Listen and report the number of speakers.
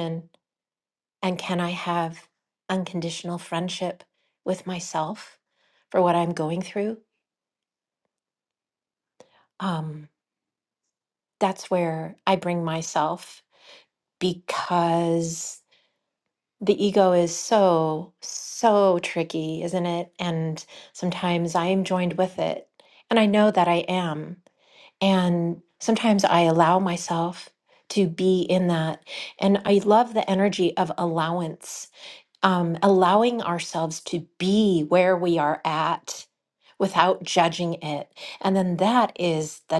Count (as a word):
one